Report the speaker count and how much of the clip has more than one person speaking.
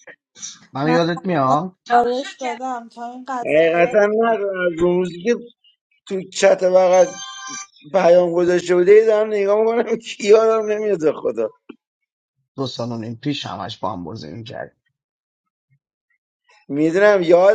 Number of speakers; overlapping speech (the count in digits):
3, about 4%